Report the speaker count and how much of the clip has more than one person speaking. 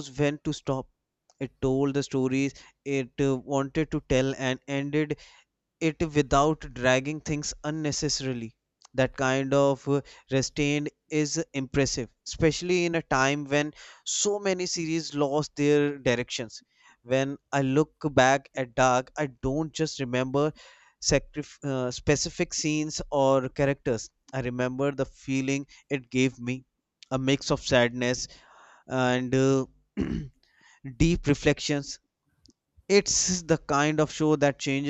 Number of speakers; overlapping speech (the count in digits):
1, no overlap